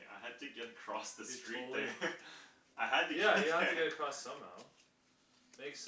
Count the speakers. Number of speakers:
2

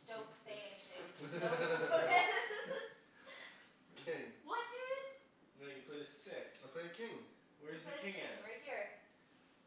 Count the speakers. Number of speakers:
3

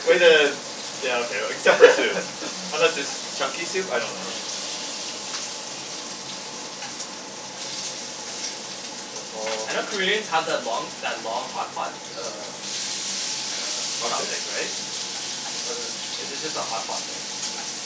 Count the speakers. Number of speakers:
2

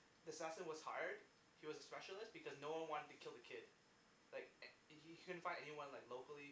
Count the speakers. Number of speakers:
1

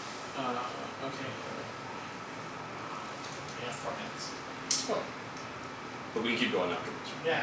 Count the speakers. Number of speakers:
2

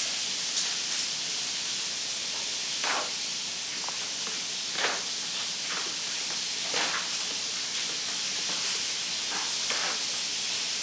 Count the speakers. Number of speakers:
0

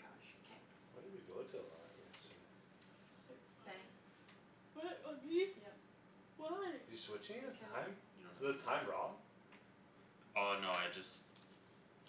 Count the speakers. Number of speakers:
4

